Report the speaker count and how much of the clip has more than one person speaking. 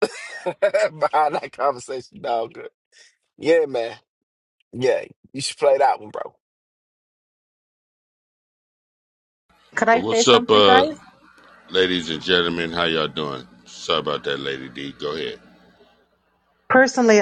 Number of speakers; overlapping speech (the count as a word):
three, about 6%